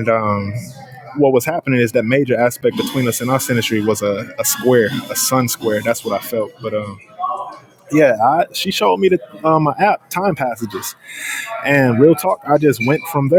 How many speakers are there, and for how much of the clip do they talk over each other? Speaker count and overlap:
one, no overlap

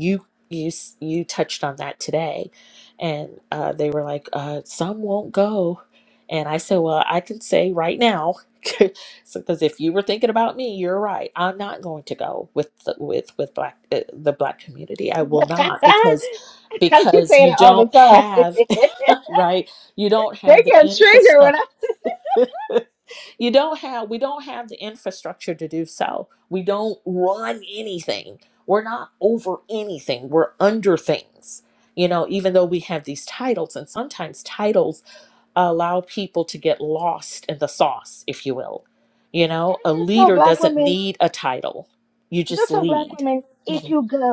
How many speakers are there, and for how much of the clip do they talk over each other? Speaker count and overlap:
two, about 10%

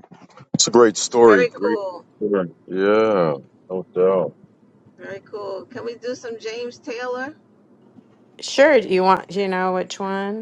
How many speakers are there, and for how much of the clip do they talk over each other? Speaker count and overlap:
three, about 5%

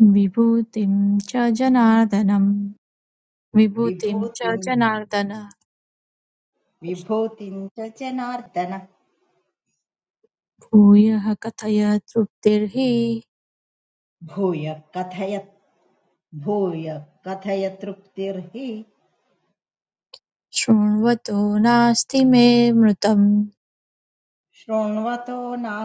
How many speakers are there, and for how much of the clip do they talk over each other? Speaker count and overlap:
two, about 3%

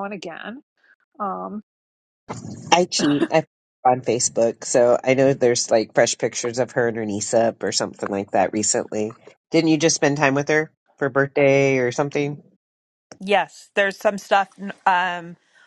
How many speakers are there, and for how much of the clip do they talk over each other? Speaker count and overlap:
three, no overlap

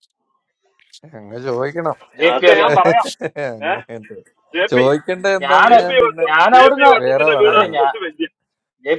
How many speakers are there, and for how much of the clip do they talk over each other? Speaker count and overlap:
three, about 35%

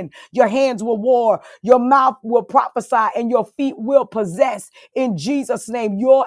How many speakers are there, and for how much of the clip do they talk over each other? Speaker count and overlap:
one, no overlap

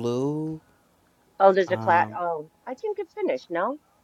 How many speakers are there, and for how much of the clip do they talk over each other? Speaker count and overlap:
two, about 12%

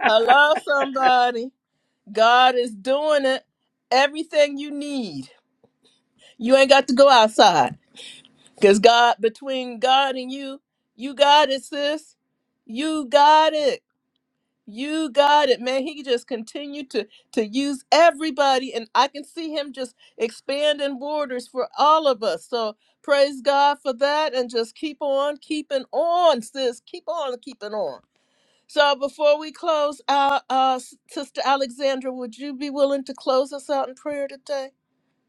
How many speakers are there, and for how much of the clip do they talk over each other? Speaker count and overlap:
one, no overlap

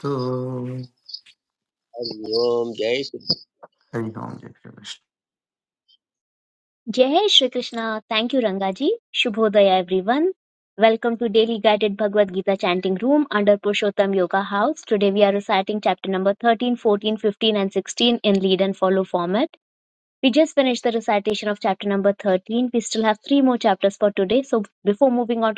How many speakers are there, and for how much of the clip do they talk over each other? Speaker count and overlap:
three, no overlap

